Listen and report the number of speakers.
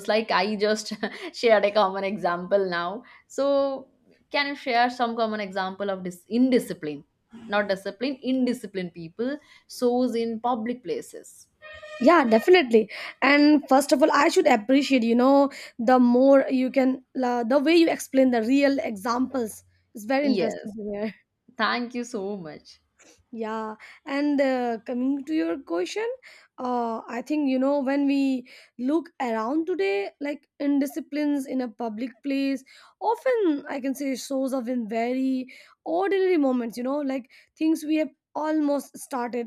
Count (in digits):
2